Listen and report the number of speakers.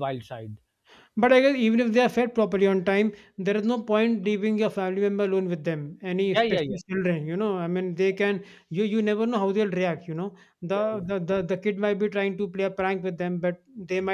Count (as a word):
two